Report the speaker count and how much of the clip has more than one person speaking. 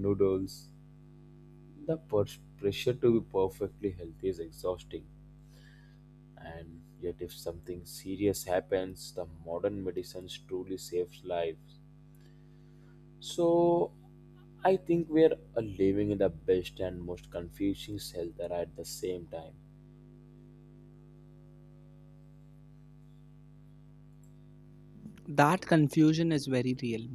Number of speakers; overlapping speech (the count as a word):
two, no overlap